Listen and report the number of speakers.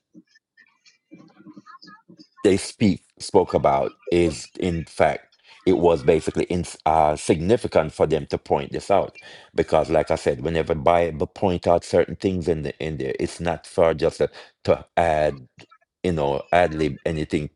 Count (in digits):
1